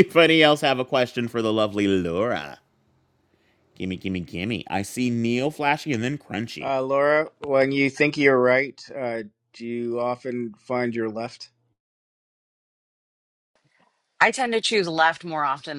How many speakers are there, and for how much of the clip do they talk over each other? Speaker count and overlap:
three, under 1%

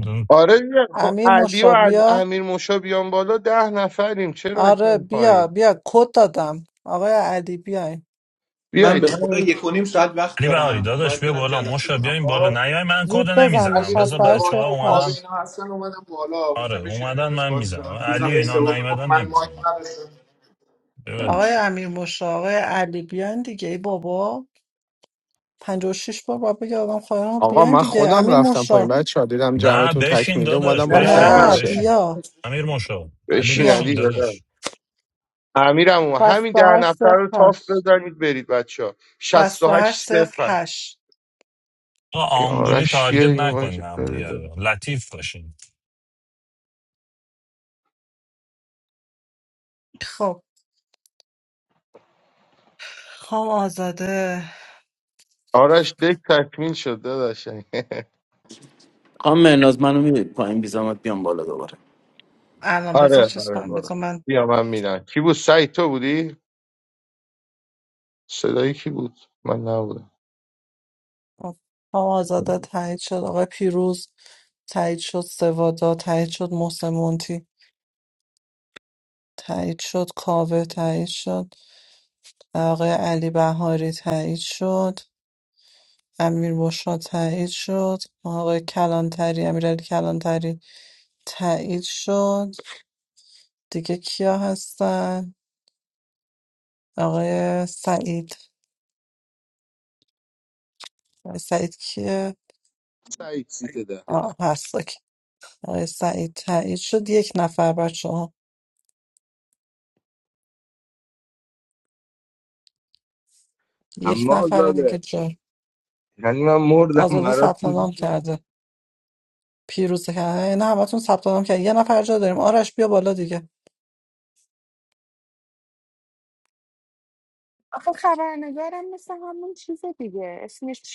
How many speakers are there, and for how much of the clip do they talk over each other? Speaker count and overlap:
seven, about 17%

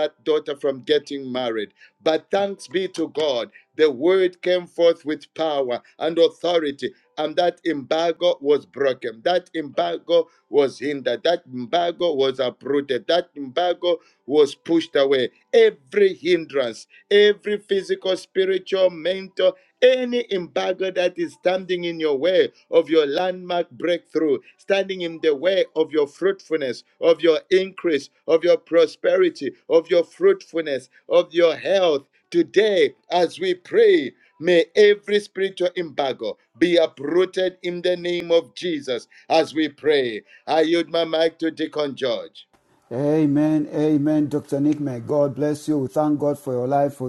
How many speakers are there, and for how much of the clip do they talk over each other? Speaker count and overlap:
two, no overlap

